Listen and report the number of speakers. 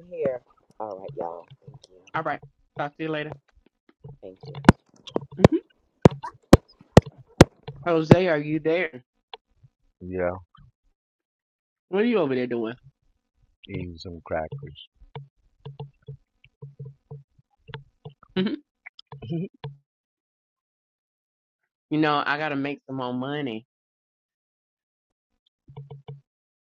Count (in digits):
3